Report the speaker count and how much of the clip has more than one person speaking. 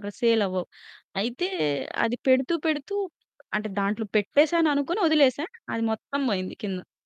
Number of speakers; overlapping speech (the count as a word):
one, no overlap